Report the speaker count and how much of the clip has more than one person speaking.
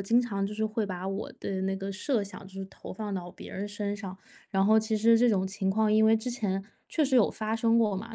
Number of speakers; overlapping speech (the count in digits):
1, no overlap